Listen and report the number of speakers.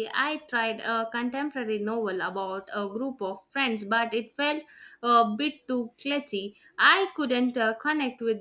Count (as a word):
one